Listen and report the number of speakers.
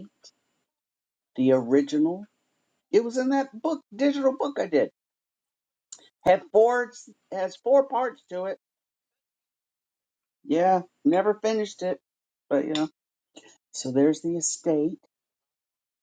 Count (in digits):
1